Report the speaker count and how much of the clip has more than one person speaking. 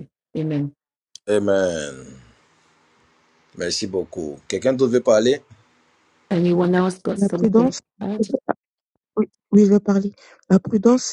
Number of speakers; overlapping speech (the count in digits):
3, about 7%